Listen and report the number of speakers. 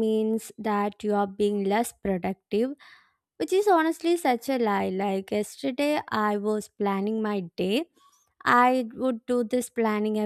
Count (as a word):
one